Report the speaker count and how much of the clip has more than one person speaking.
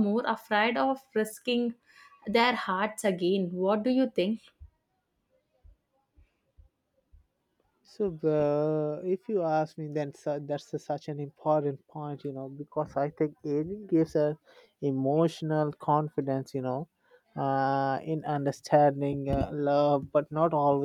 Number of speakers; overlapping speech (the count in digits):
2, no overlap